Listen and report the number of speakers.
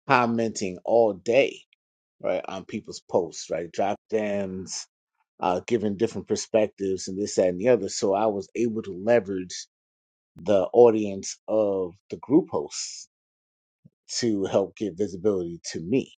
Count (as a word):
one